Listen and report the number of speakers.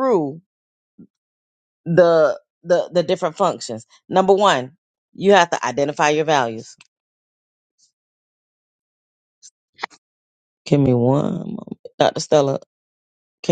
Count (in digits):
1